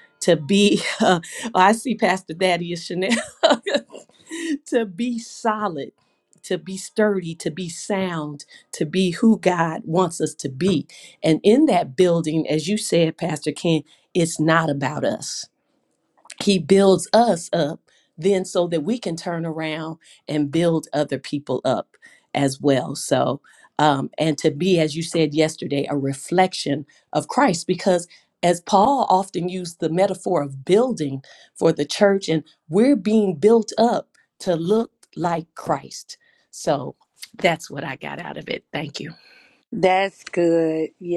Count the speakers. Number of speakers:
2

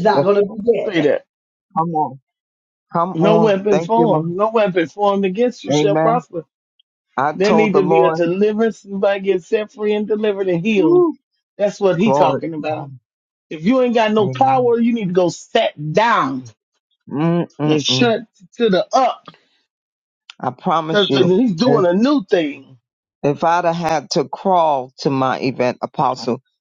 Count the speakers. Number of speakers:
3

